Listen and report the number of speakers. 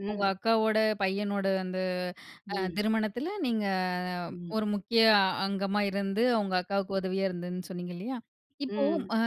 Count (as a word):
two